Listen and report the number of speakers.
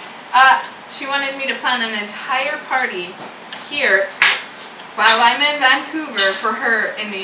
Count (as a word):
one